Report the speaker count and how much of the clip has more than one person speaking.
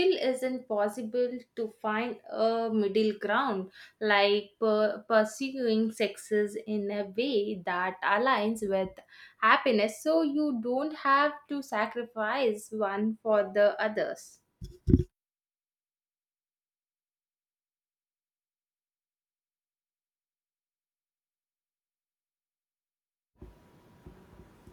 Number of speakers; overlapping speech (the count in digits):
1, no overlap